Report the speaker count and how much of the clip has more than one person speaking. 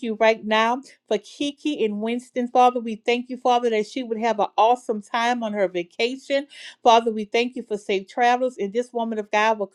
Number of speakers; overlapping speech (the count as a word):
one, no overlap